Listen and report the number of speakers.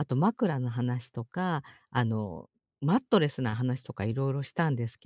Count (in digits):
1